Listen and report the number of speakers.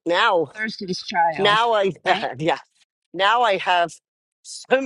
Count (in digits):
2